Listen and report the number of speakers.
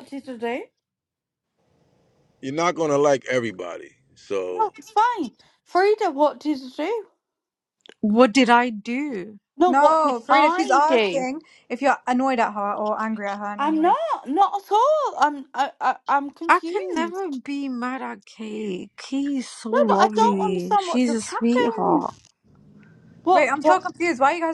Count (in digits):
4